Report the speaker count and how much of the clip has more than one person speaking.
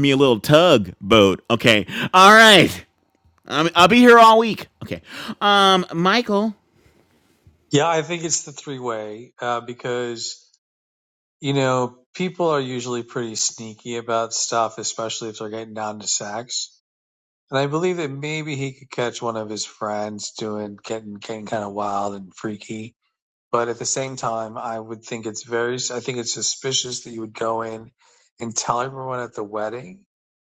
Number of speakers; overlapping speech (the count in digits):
2, no overlap